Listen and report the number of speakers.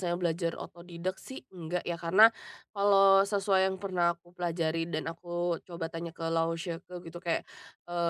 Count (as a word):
one